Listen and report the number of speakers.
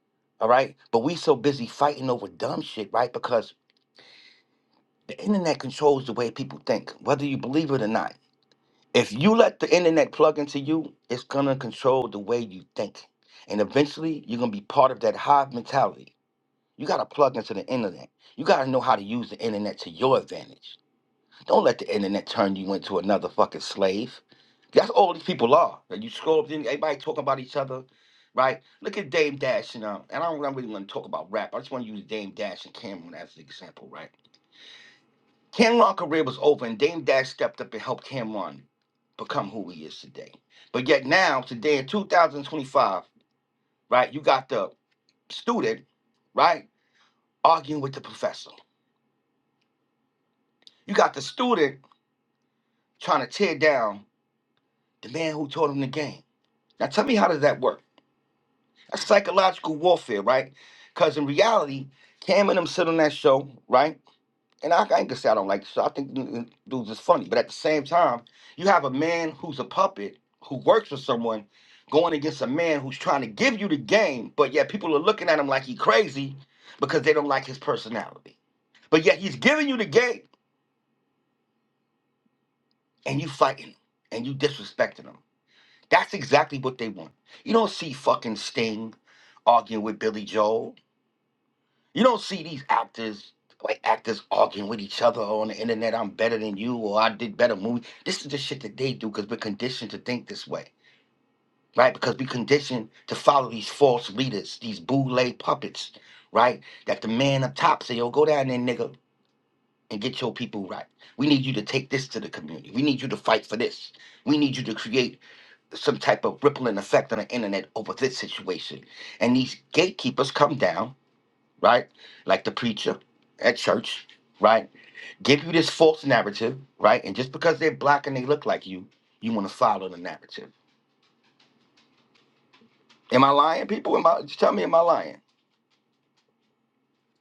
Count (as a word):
one